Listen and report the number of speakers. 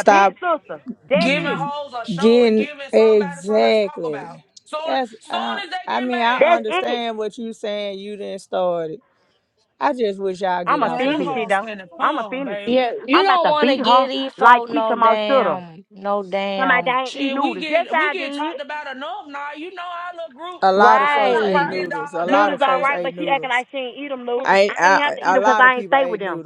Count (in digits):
4